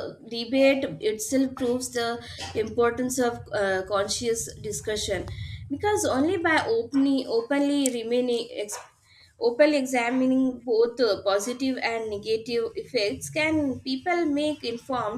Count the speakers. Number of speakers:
one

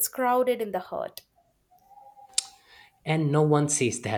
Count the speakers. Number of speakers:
two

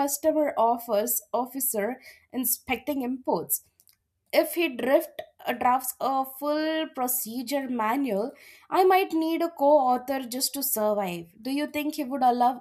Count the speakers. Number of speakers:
one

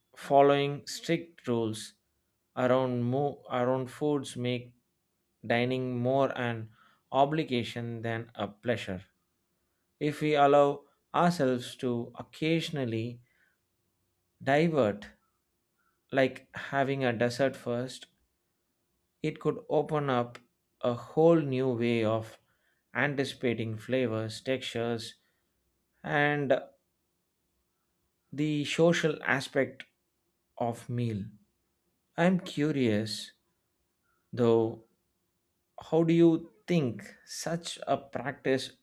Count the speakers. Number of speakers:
one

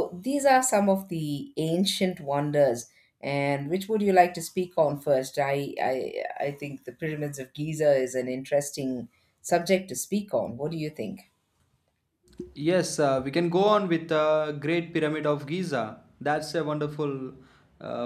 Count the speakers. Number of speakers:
two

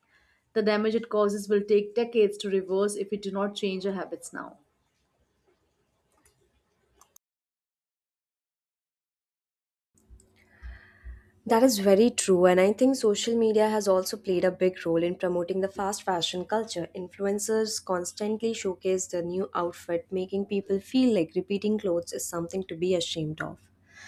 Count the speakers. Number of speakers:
two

